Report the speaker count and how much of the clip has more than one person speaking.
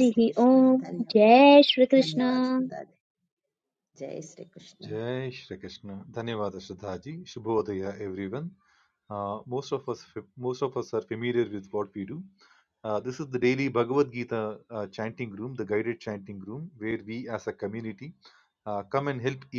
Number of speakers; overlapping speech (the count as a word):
three, about 5%